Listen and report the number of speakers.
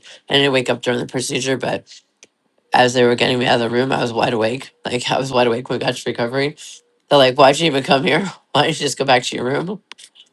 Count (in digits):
1